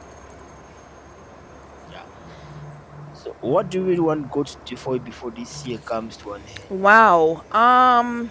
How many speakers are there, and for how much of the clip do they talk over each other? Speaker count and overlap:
two, no overlap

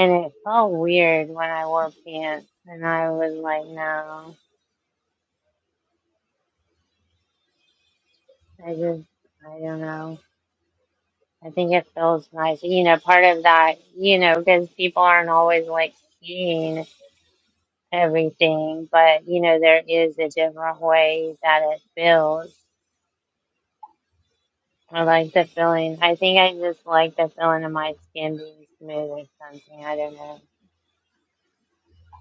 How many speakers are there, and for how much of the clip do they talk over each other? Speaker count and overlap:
one, no overlap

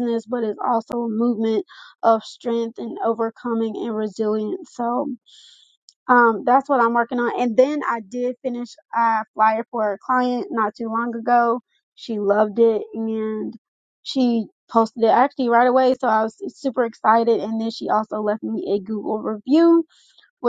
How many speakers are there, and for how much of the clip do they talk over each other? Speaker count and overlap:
one, no overlap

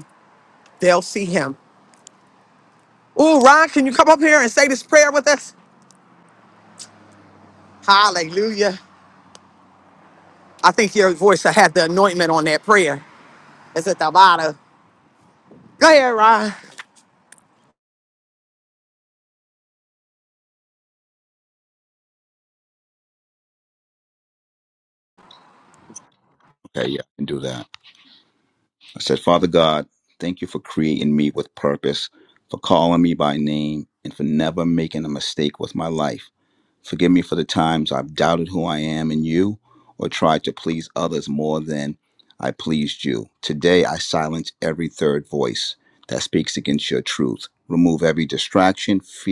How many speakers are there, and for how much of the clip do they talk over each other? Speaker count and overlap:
two, no overlap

